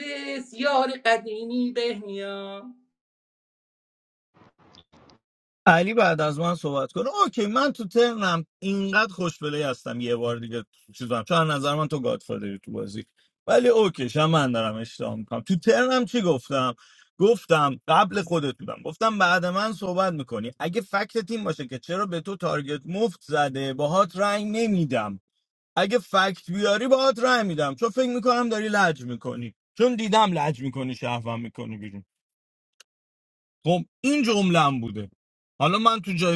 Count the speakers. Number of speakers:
2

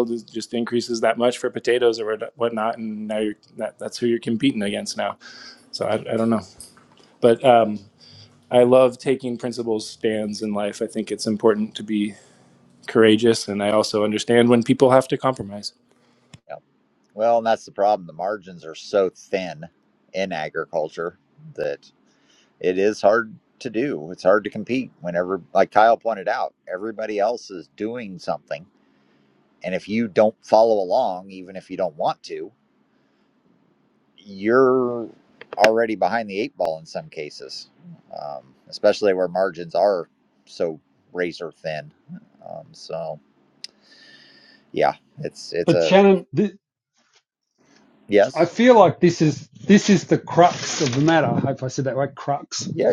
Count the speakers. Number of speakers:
3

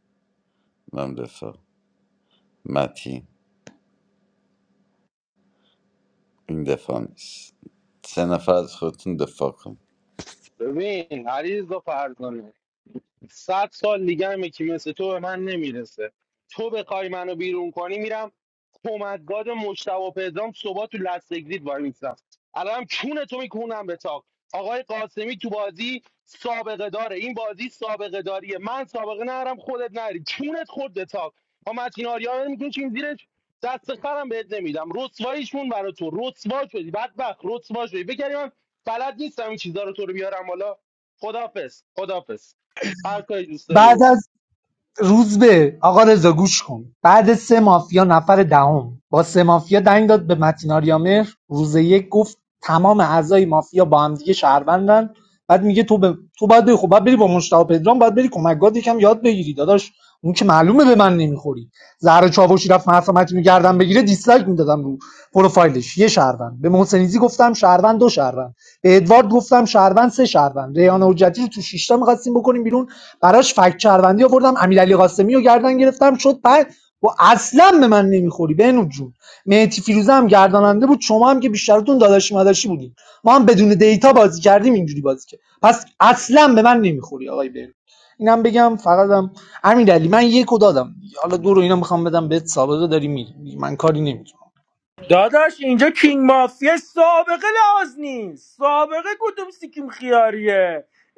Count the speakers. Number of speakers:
4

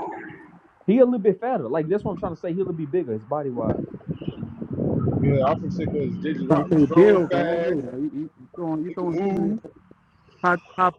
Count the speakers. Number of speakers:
3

